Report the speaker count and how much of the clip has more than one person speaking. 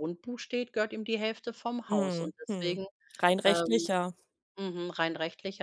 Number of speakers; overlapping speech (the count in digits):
2, about 23%